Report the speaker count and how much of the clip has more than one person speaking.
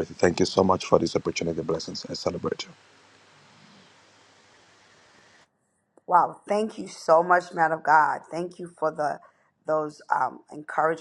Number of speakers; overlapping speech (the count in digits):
2, no overlap